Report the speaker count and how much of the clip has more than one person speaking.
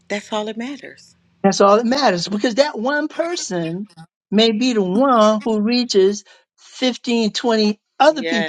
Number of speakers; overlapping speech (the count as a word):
two, about 5%